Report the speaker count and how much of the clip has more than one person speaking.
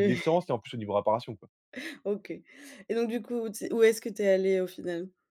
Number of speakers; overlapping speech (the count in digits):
2, about 5%